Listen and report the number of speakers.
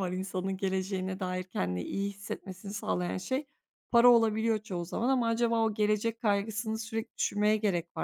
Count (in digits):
1